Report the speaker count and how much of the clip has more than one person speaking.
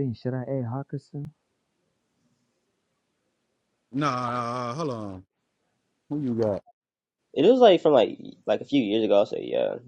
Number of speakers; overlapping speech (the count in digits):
3, no overlap